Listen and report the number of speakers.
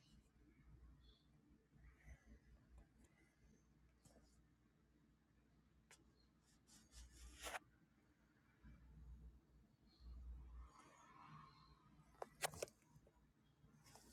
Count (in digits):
0